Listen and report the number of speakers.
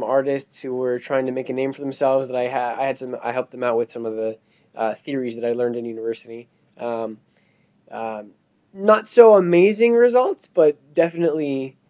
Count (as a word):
one